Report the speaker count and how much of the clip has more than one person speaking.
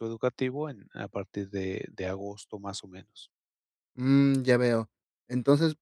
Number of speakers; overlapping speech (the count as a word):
two, no overlap